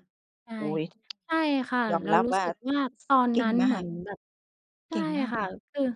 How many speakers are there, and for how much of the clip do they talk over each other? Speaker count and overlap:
2, about 29%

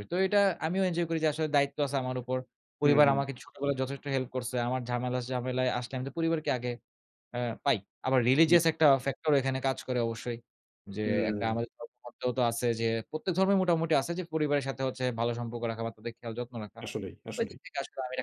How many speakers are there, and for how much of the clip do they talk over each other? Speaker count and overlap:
2, about 7%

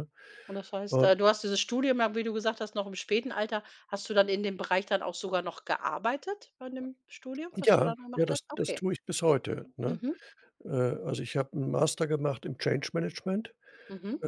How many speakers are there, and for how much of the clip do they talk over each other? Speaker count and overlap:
2, about 11%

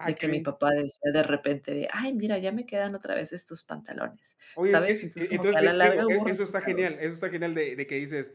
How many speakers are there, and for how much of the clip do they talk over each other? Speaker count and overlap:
2, about 26%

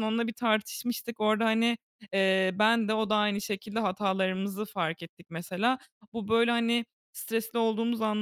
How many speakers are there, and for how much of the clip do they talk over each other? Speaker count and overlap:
1, no overlap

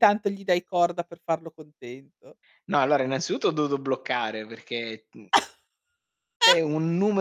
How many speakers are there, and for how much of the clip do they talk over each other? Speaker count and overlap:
2, no overlap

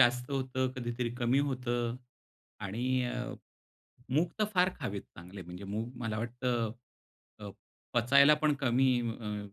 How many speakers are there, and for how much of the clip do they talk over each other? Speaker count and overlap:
1, no overlap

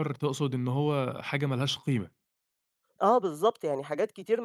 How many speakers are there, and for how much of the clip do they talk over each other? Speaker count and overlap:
2, no overlap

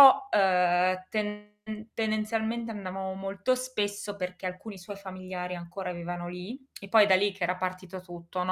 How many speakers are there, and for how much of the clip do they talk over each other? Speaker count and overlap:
1, no overlap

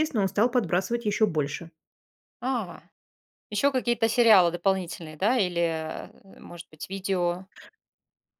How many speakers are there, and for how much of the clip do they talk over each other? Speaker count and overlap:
2, no overlap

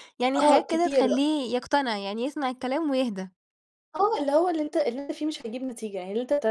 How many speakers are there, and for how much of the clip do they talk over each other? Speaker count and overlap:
2, about 13%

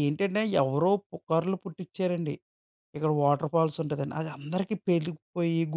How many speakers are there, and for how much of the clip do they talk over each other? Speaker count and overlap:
1, no overlap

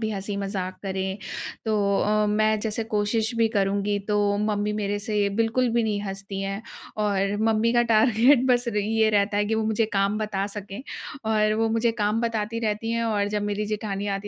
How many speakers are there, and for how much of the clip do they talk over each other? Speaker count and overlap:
1, no overlap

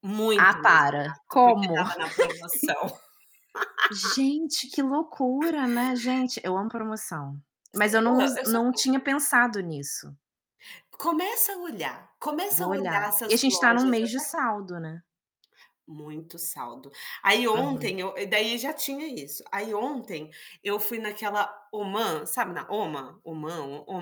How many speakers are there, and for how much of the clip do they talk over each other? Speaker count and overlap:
2, about 15%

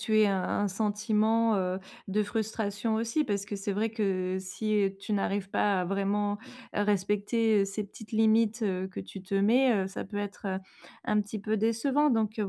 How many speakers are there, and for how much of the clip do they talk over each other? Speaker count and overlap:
1, no overlap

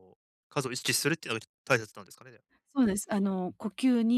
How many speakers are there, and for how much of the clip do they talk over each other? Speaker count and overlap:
2, no overlap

